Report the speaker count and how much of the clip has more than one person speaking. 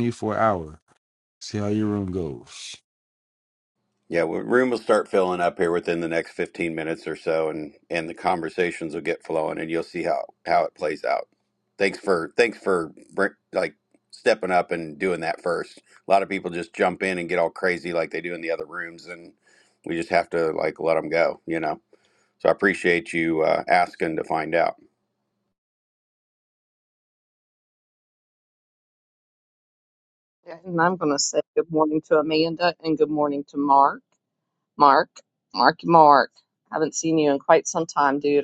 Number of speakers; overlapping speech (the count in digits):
3, no overlap